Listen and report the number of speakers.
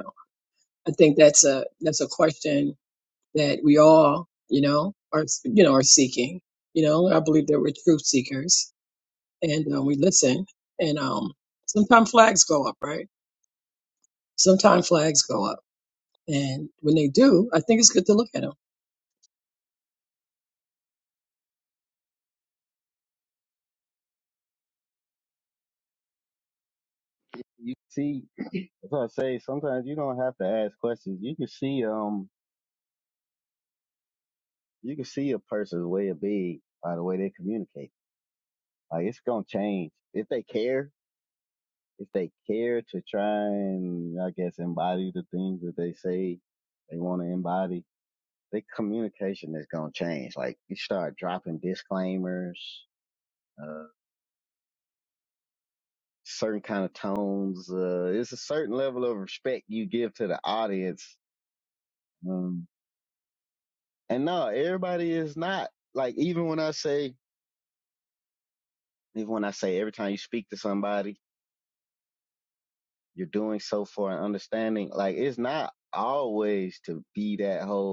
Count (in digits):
2